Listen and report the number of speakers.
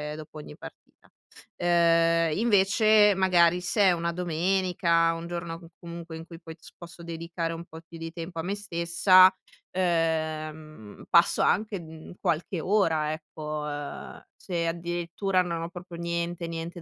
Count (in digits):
1